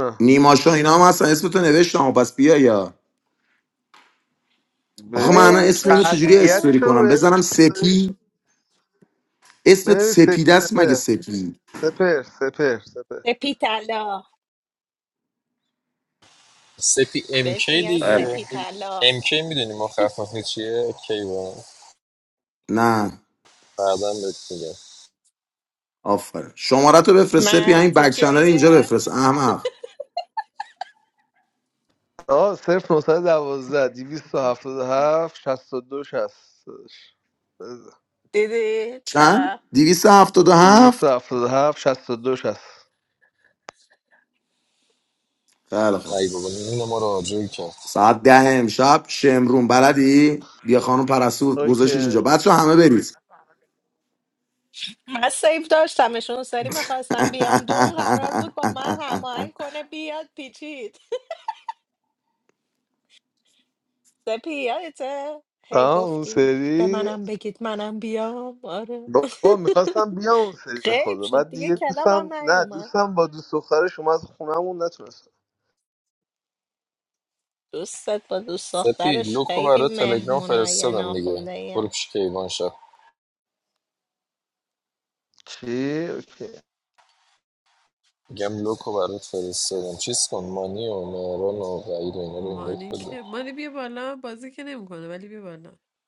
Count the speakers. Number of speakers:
5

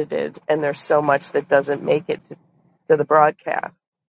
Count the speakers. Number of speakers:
1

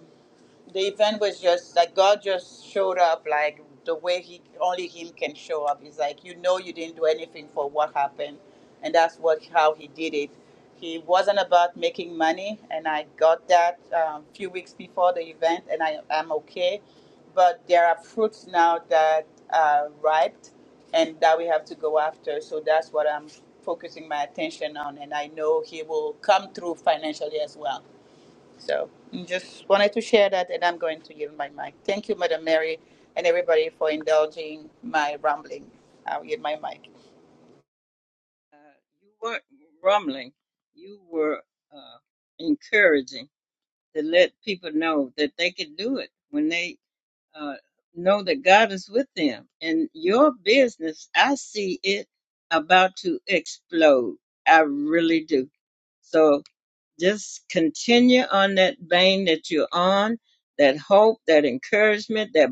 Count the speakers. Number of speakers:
2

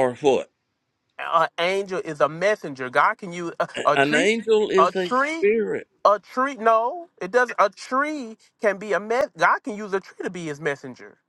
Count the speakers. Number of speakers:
2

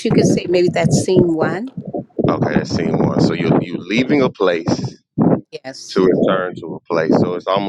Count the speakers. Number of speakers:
2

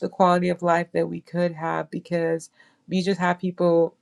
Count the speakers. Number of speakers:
1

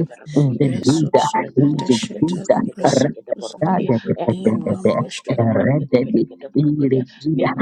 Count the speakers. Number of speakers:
3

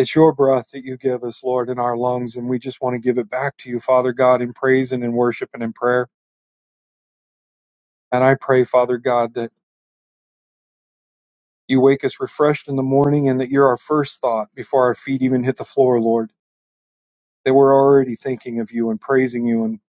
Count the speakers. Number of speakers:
1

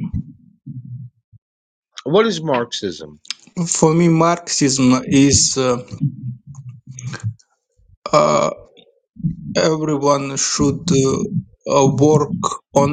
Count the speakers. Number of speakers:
2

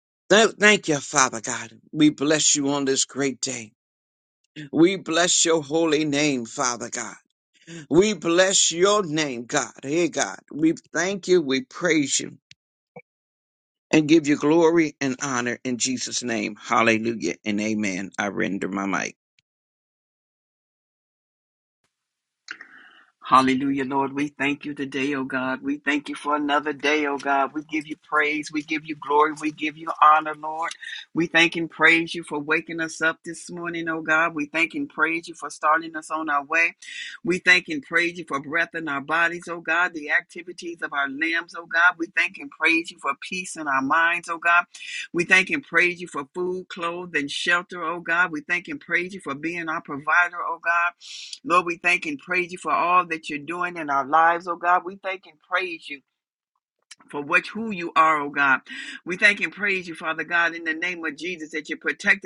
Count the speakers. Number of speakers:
2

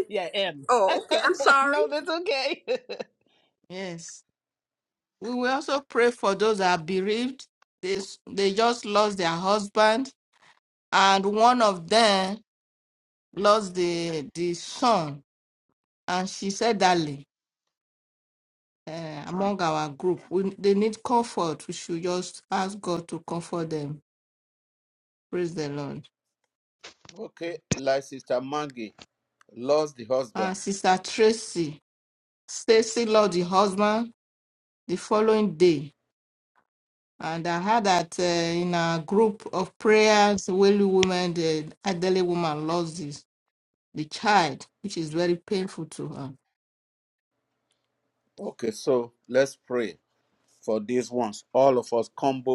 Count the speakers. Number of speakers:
4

